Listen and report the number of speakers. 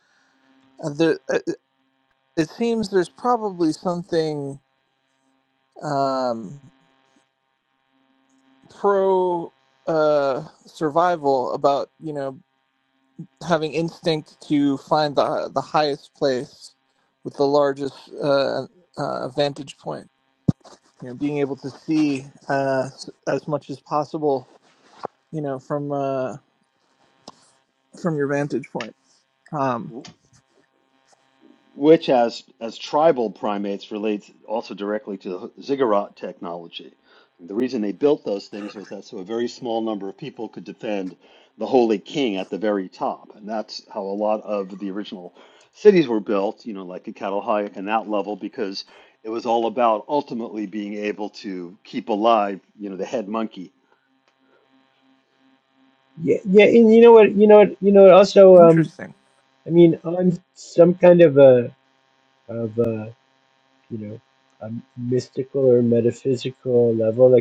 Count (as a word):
three